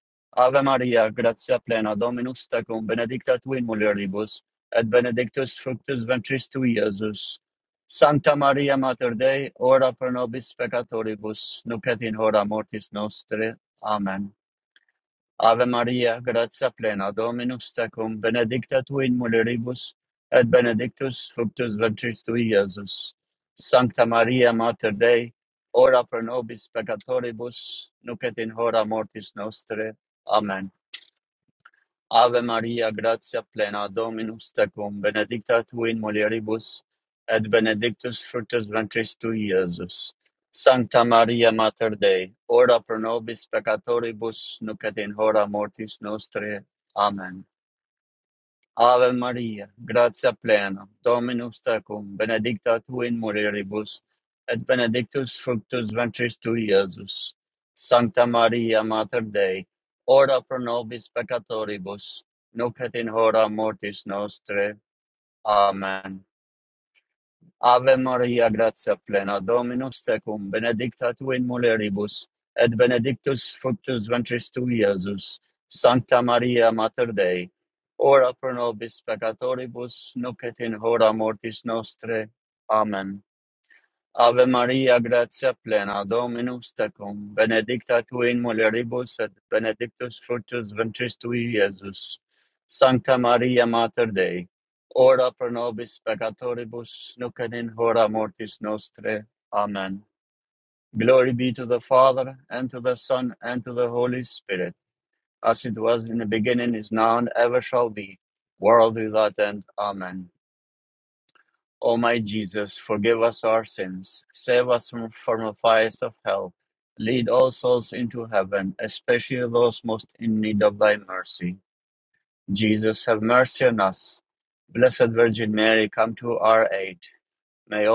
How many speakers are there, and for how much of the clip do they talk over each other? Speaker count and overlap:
1, no overlap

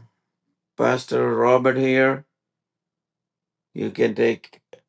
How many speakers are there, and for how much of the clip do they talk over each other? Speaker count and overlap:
1, no overlap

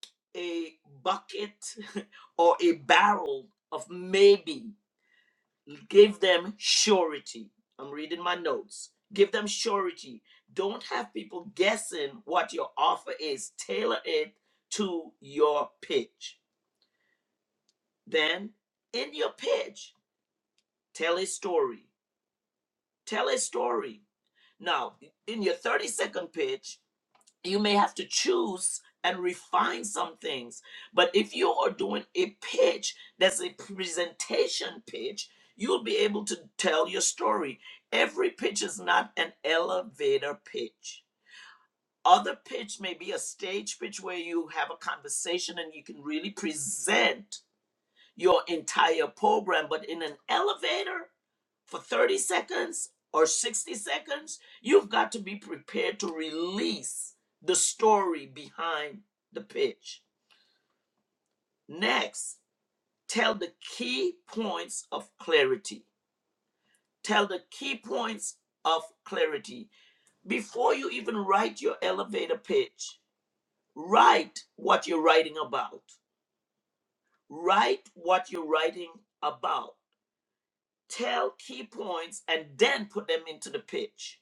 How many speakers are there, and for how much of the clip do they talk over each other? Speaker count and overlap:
1, no overlap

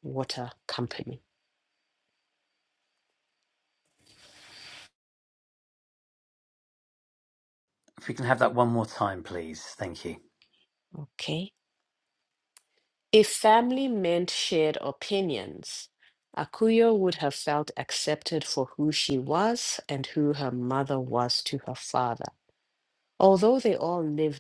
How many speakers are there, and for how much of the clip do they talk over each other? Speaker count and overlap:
2, no overlap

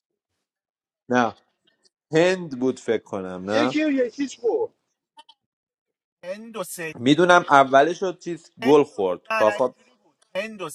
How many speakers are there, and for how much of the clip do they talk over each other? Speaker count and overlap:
3, about 5%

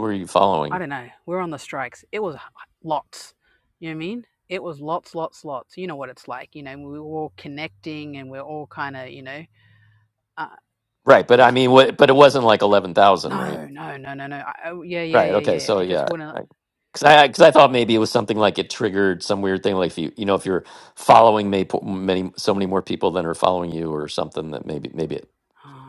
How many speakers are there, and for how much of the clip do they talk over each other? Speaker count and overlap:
2, about 6%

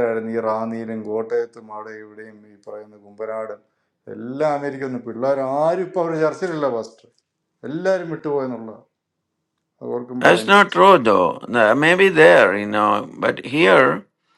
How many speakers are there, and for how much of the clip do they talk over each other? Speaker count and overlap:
2, about 3%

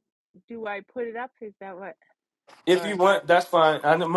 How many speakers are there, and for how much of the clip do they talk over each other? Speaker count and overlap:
2, about 5%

